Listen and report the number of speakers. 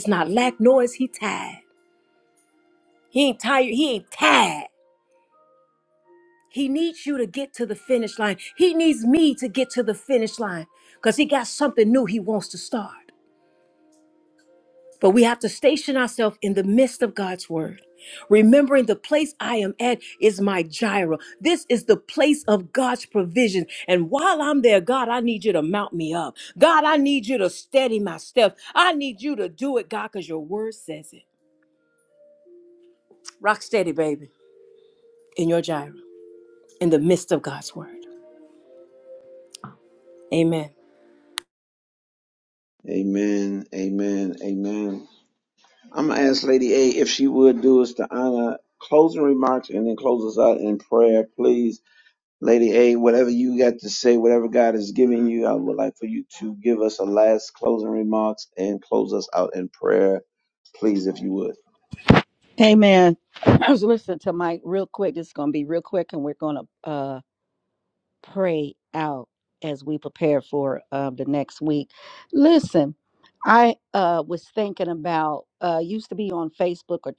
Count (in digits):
3